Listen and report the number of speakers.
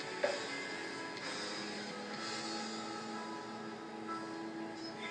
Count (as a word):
zero